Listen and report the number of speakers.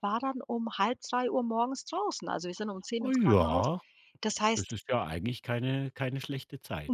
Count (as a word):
two